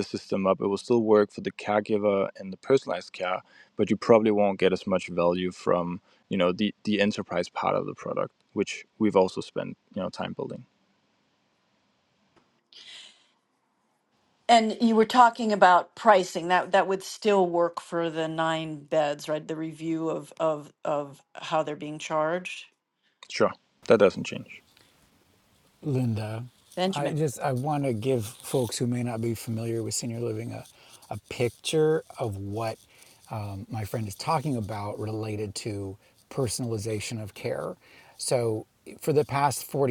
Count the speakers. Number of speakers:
3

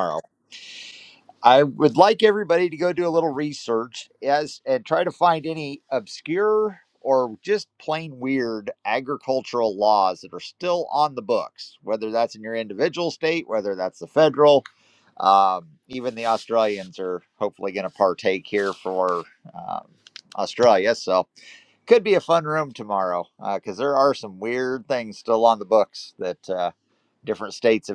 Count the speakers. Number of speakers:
1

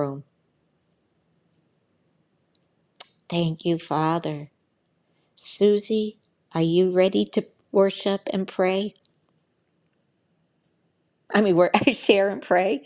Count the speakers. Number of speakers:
1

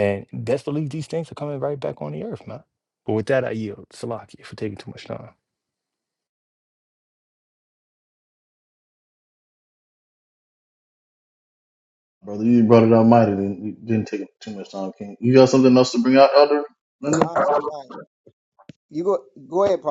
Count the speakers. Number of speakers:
3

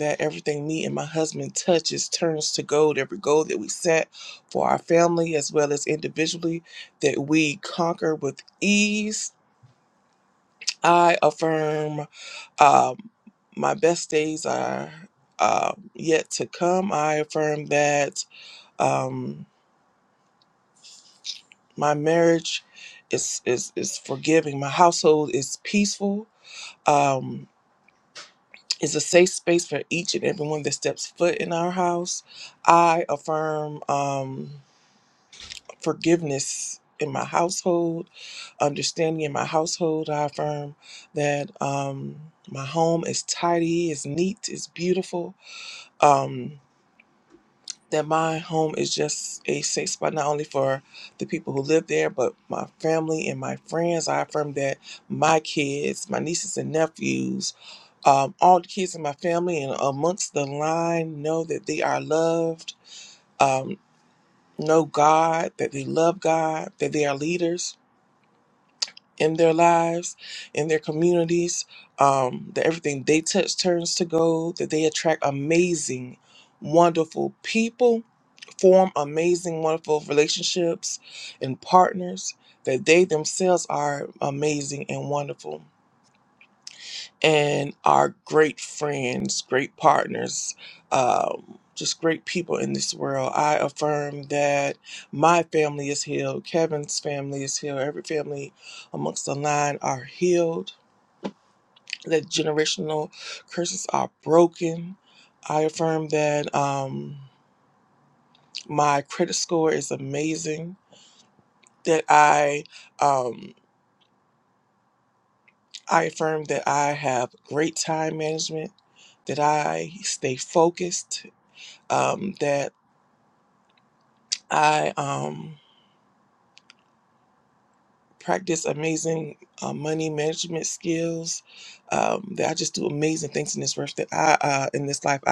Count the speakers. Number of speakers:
1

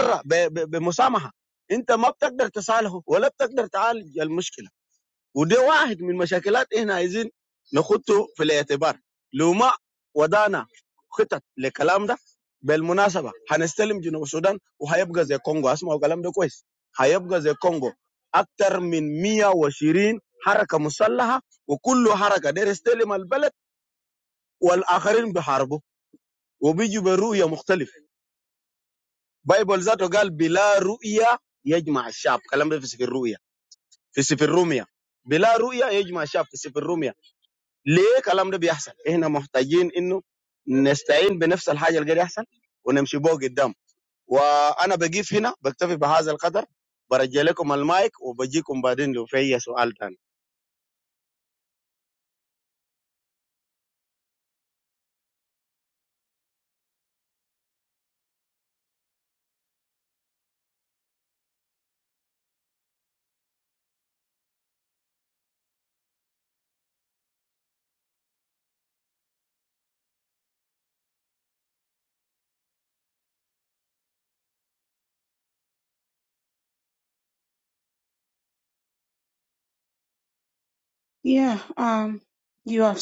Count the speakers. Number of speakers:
2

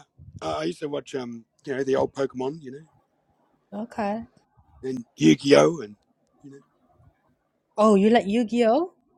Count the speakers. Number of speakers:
2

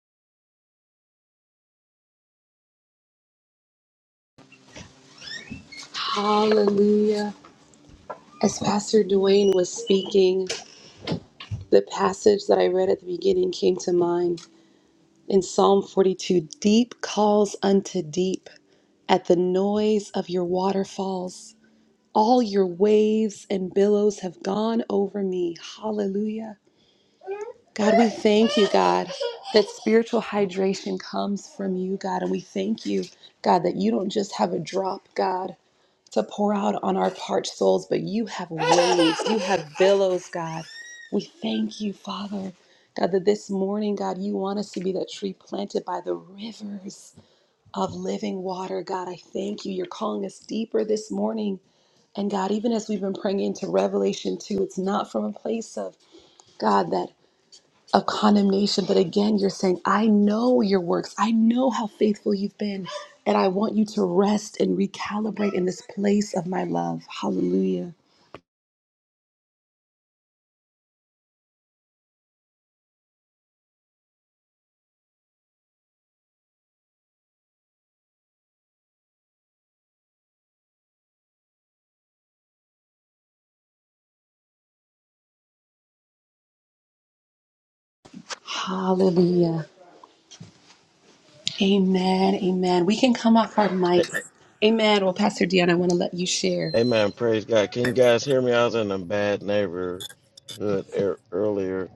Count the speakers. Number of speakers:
2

